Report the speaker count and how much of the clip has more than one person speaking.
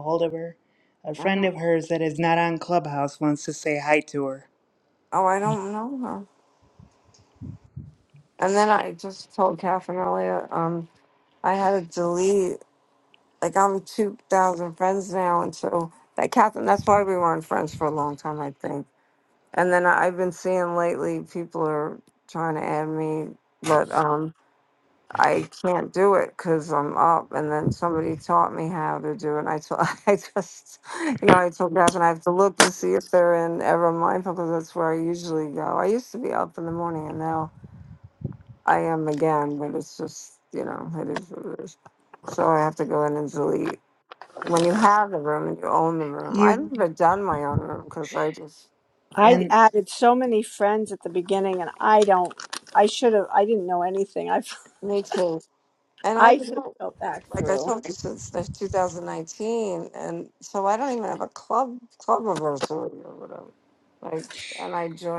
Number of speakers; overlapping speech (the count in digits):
3, about 3%